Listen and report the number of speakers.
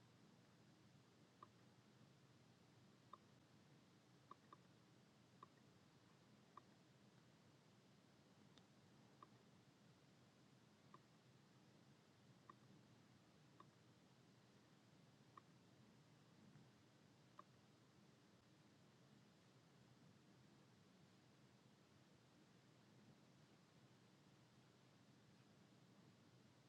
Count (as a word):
zero